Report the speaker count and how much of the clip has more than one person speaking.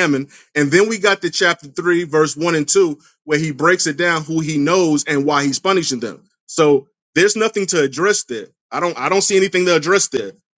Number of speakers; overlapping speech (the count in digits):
1, no overlap